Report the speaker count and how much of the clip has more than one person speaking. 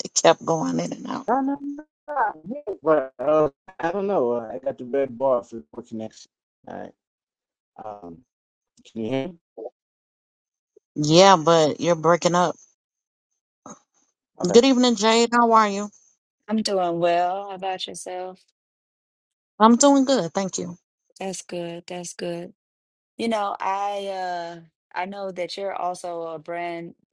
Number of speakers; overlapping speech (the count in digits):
3, about 1%